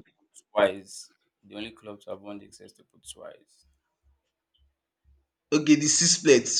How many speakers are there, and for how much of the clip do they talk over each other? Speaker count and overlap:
two, no overlap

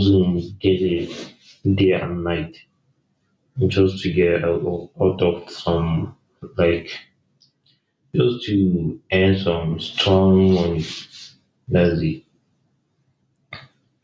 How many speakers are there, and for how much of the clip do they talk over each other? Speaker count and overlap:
one, no overlap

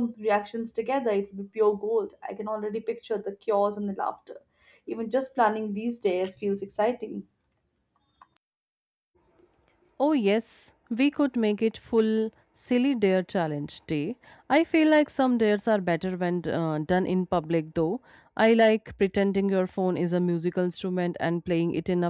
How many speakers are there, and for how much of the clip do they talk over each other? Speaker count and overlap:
two, no overlap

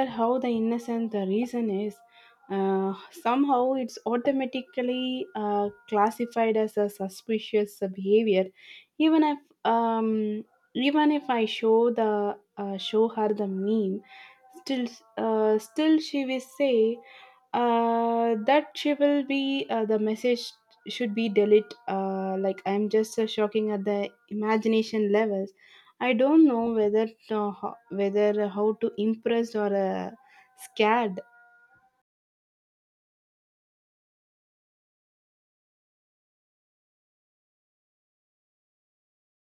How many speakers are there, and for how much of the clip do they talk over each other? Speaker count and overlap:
one, no overlap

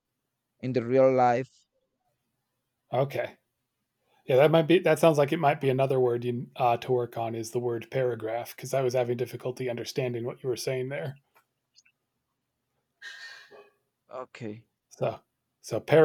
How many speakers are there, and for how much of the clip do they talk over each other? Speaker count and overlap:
two, no overlap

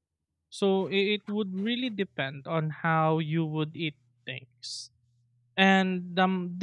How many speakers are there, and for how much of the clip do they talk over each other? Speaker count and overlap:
one, no overlap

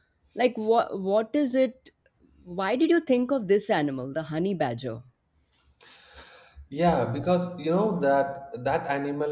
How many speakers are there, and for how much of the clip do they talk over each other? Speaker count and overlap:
two, no overlap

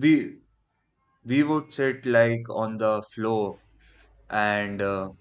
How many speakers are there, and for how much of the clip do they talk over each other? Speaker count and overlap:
one, no overlap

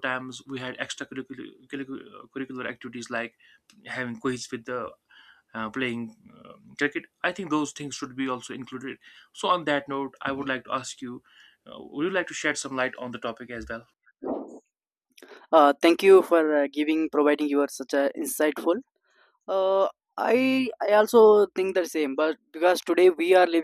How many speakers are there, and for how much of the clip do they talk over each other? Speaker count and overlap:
two, no overlap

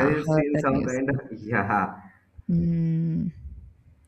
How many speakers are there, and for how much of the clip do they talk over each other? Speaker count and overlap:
two, about 23%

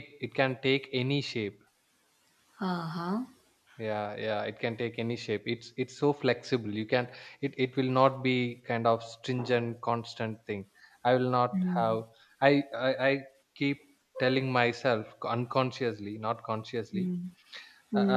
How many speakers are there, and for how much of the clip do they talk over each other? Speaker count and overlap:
two, about 4%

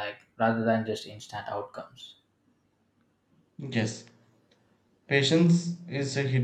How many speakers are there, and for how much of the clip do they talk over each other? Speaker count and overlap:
two, no overlap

